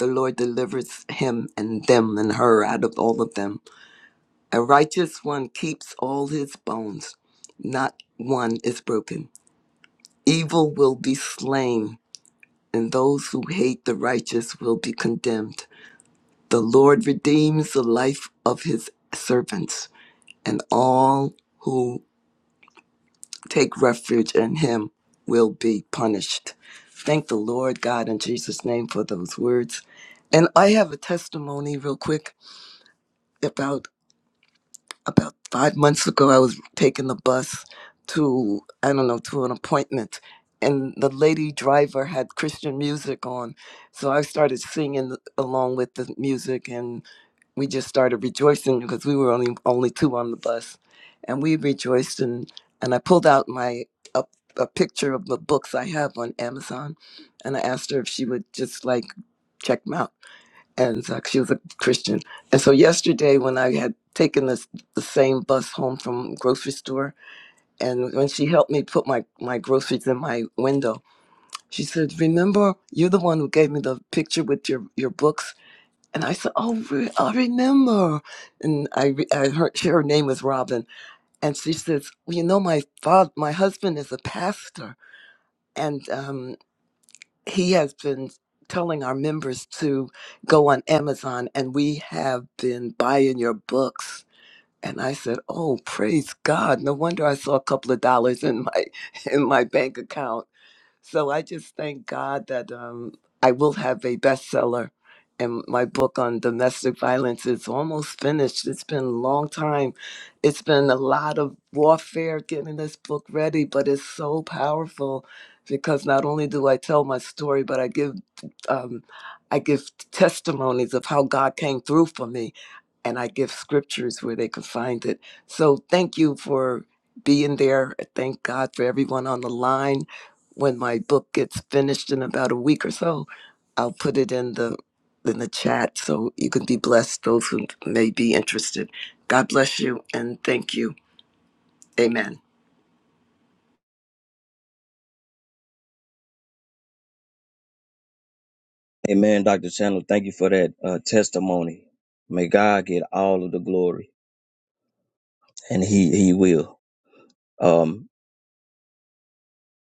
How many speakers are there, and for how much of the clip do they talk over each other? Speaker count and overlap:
2, no overlap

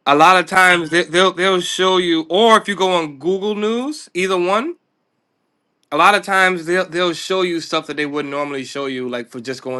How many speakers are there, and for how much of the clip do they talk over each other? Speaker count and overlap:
1, no overlap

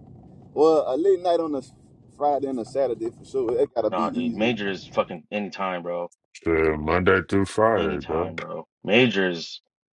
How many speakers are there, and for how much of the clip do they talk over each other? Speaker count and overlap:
3, about 13%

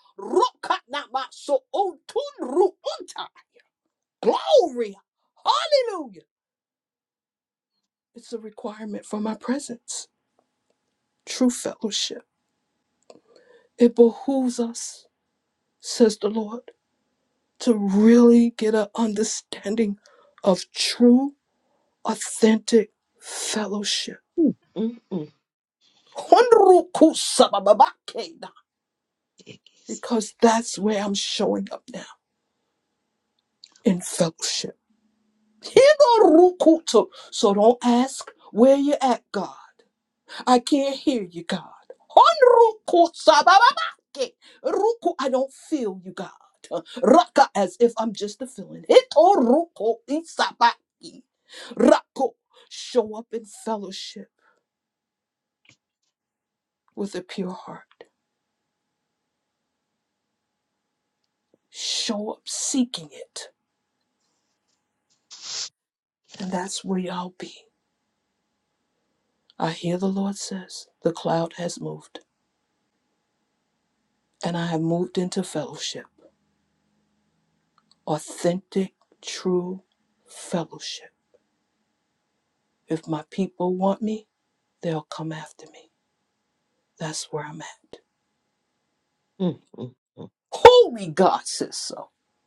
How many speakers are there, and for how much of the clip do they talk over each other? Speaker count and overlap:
2, no overlap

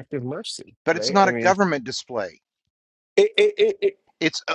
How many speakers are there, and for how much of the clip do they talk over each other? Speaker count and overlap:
2, about 15%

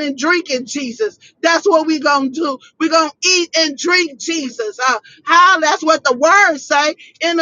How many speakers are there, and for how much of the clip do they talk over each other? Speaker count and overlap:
1, no overlap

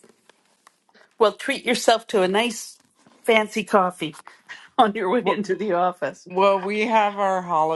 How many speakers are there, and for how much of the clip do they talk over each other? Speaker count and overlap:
2, about 2%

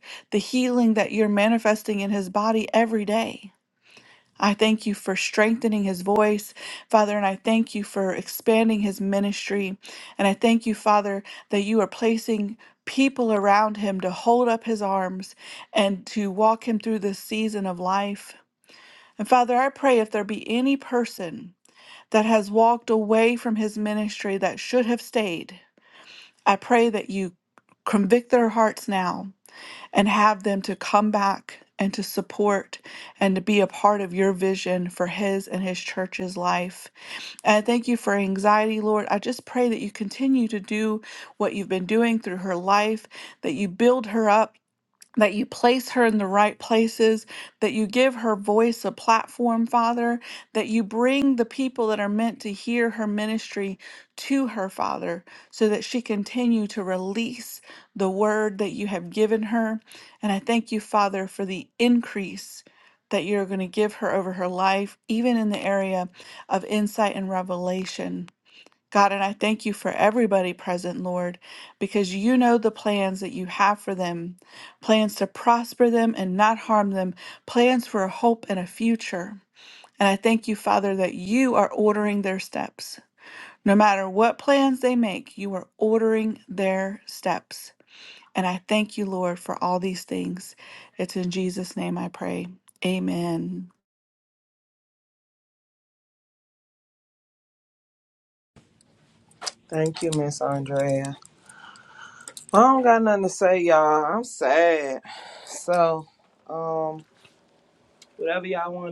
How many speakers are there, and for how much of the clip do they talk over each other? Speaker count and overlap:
2, no overlap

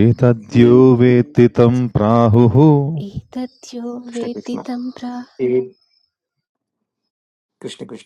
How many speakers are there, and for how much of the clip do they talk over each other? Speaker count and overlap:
3, about 11%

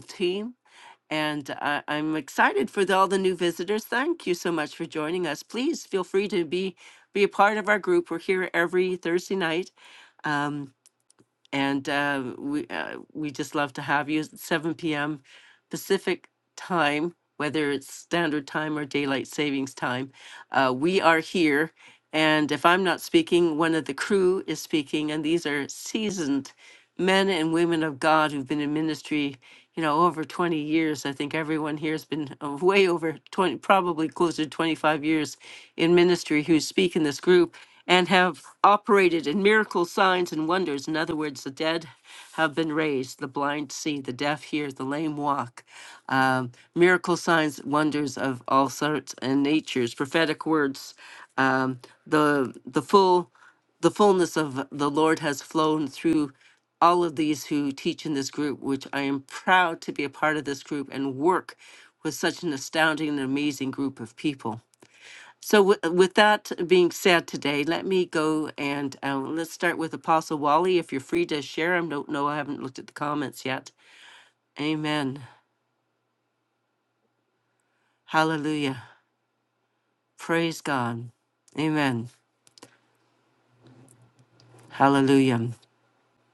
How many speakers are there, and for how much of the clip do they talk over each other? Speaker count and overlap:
1, no overlap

